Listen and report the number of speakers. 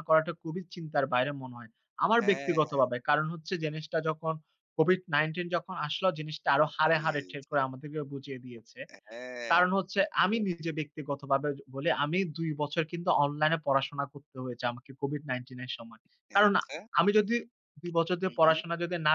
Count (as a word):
two